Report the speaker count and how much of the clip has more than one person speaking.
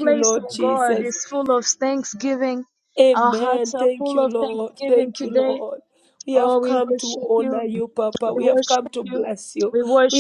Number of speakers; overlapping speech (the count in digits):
2, about 58%